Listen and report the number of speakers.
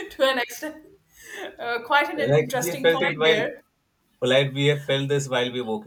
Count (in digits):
2